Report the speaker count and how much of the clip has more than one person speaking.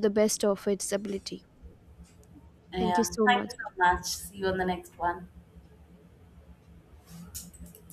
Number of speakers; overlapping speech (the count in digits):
2, about 9%